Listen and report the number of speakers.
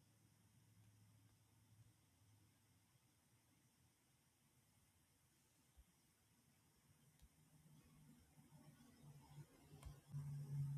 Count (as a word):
zero